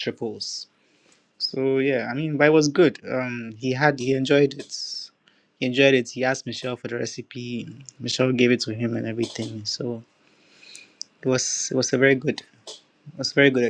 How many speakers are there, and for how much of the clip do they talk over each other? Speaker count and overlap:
one, no overlap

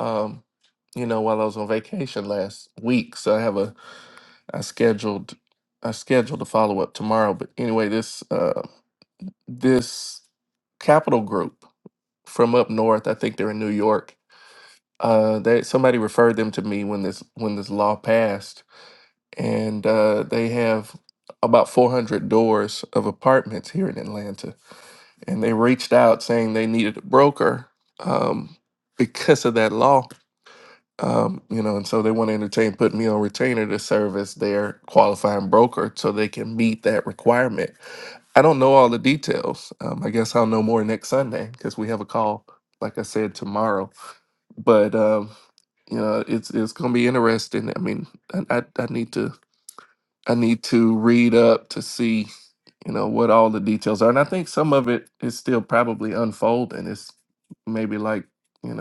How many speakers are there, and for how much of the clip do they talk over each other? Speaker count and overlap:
one, no overlap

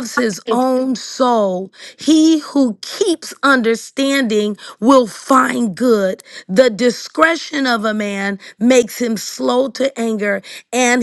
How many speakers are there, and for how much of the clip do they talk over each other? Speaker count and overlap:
one, no overlap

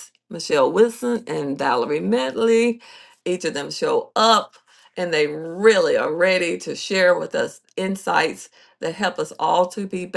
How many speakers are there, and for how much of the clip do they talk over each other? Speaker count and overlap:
one, no overlap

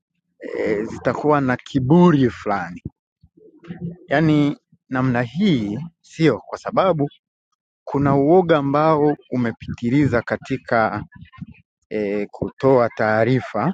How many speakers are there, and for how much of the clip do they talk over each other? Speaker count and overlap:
one, no overlap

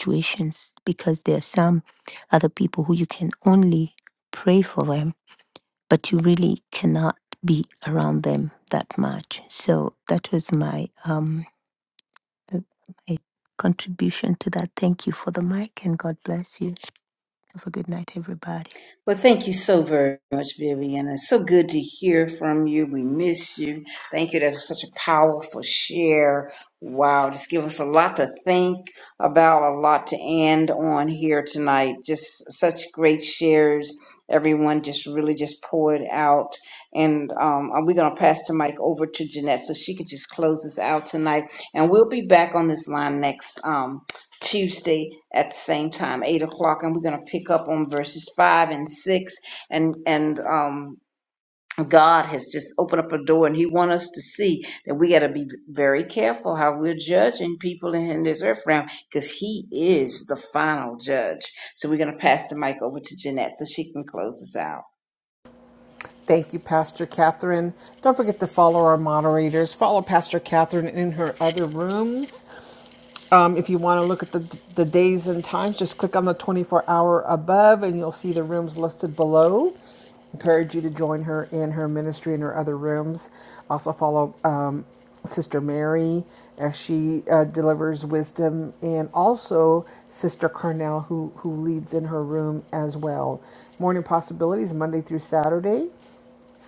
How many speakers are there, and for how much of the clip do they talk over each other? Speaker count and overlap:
three, no overlap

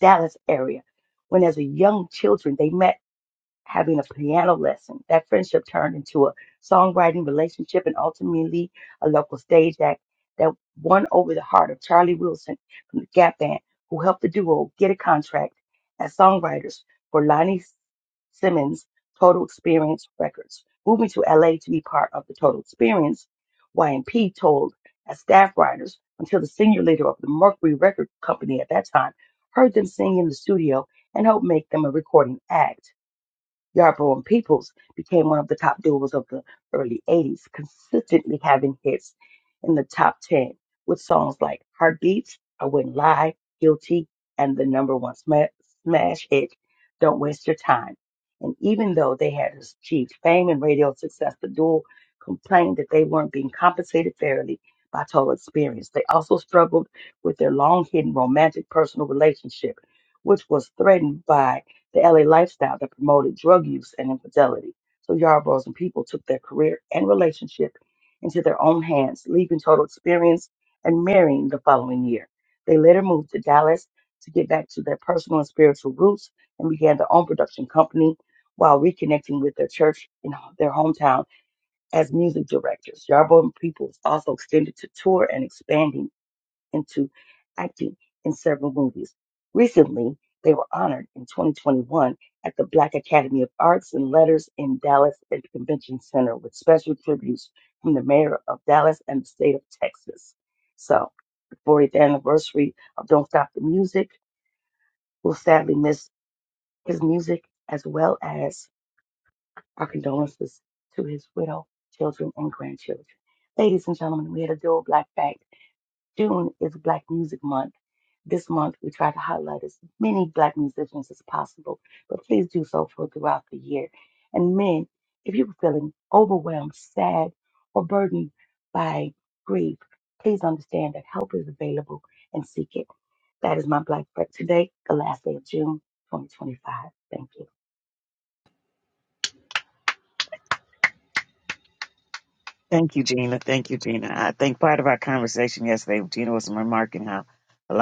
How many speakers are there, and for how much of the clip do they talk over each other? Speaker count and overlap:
two, no overlap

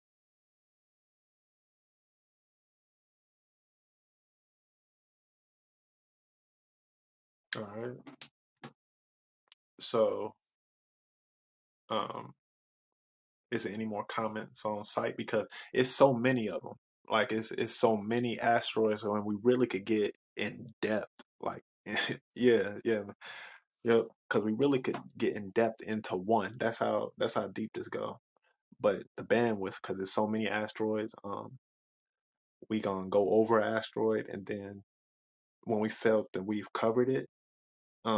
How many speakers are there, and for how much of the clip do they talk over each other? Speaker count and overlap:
one, no overlap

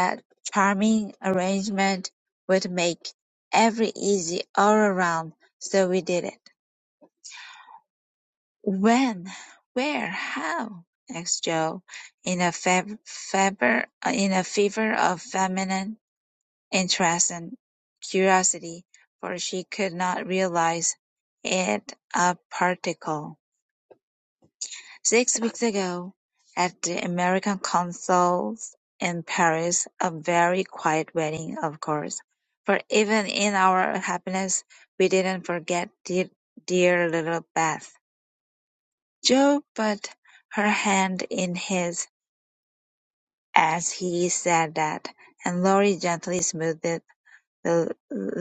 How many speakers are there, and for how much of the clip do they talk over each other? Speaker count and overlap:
one, no overlap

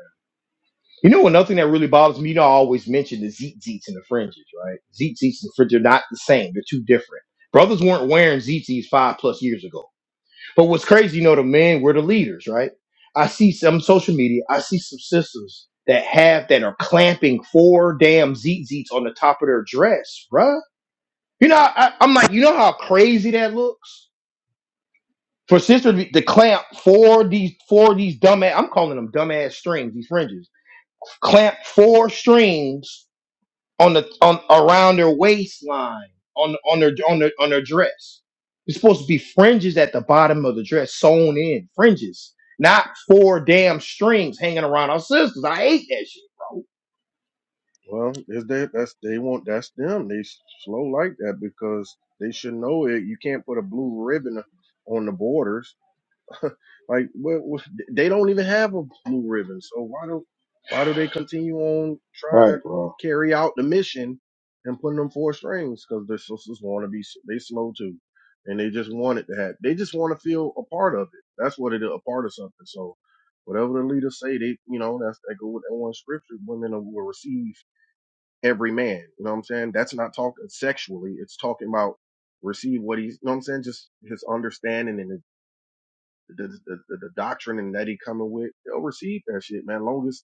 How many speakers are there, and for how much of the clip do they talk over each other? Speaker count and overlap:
two, no overlap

